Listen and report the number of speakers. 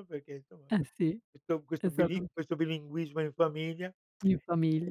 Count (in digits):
2